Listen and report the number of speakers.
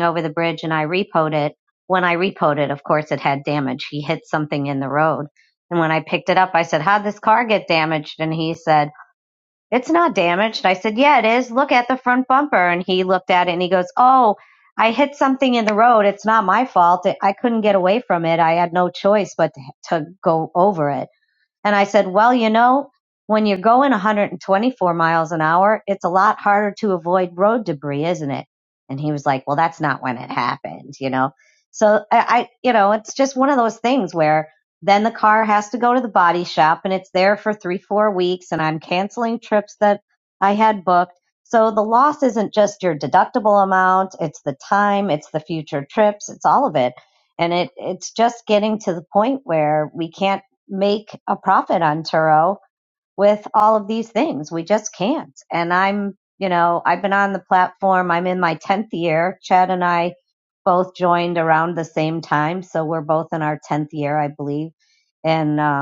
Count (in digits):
1